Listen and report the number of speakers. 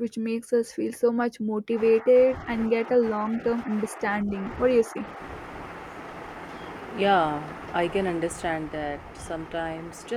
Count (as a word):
two